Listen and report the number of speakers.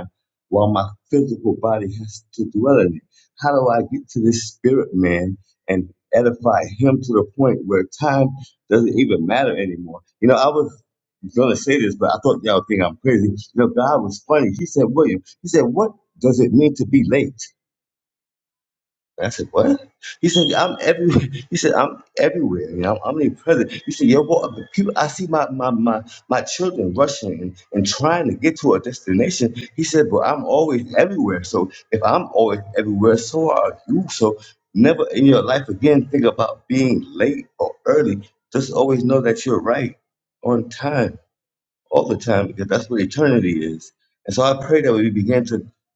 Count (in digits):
1